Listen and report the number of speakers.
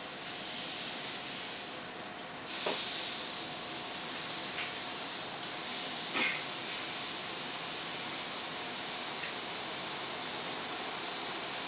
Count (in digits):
0